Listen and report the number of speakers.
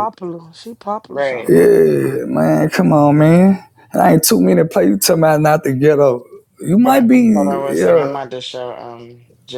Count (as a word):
three